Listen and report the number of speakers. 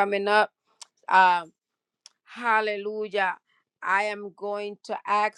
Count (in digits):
1